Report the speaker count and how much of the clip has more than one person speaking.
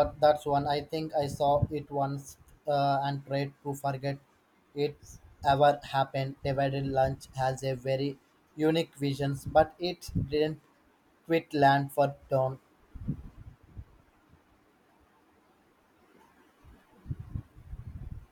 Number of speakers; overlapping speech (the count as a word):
one, no overlap